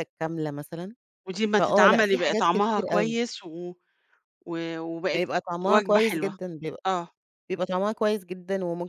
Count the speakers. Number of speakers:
two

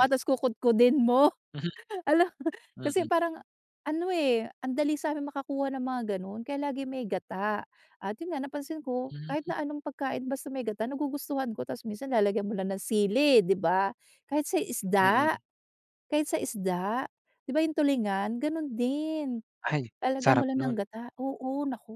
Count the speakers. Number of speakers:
two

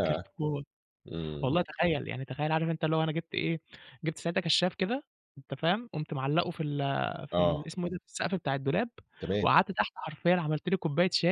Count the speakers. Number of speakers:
two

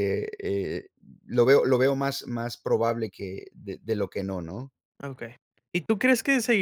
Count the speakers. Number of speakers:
two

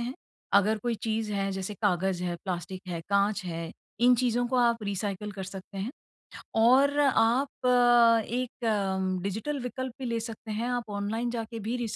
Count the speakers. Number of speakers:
one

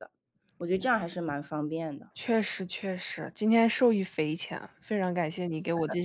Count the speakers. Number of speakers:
two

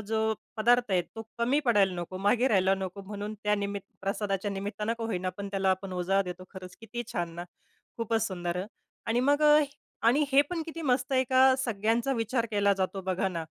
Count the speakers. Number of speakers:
one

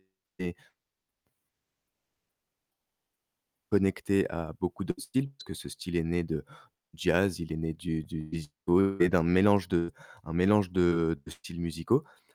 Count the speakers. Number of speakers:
one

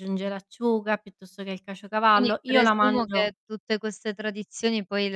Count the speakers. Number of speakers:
two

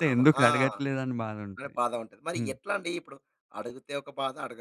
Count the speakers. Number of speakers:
two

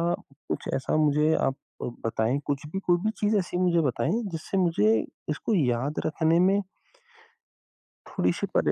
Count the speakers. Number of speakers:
one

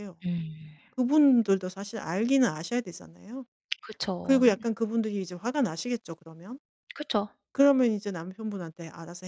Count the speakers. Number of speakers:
two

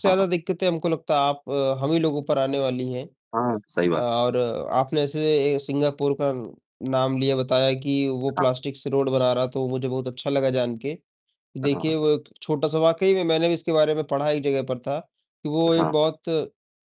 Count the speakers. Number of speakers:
two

